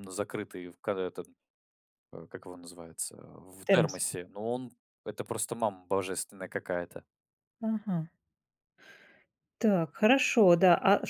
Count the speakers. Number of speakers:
two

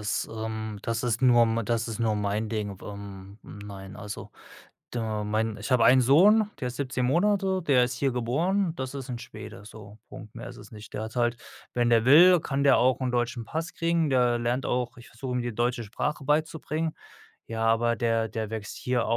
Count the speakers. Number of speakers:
one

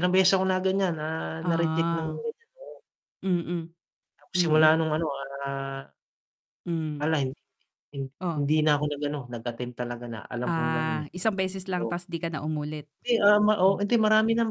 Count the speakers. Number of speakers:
two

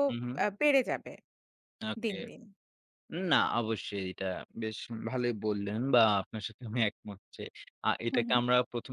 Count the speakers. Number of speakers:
two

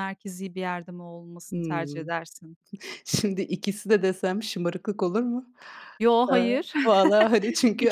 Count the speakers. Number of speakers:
two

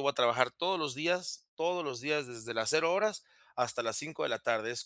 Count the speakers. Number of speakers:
one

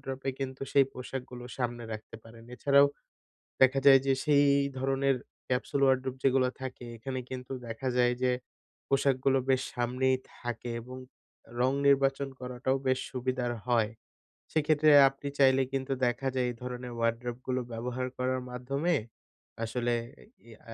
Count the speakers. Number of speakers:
one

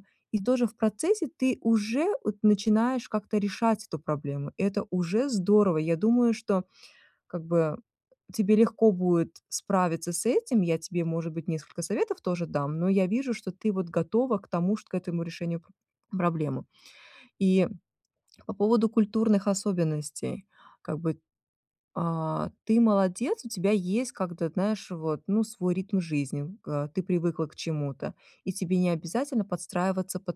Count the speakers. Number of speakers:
one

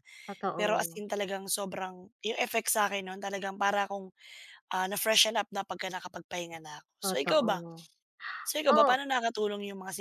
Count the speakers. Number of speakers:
two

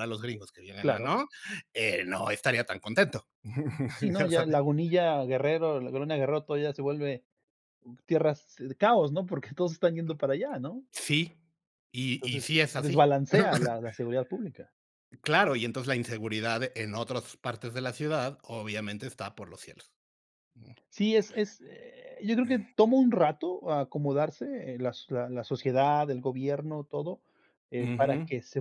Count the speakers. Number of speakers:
two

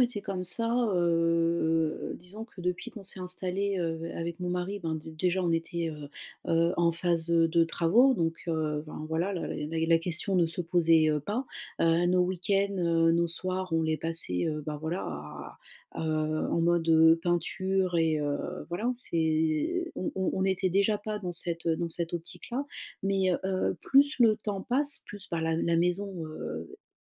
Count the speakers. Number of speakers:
one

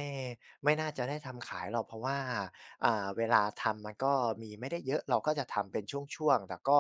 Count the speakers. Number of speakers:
one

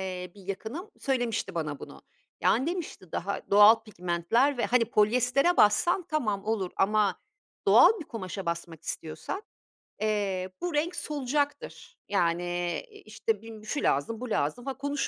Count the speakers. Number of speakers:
one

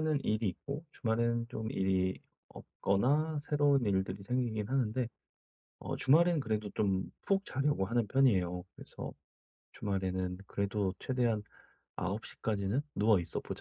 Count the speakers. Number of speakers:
one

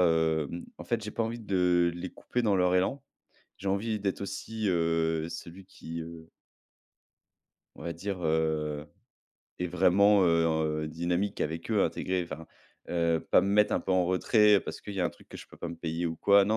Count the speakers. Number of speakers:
one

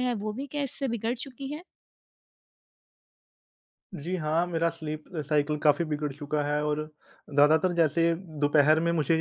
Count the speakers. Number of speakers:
two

